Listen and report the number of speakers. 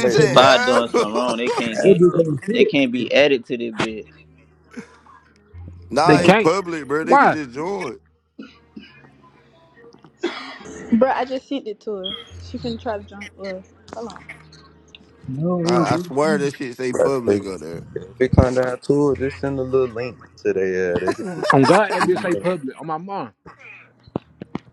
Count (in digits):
6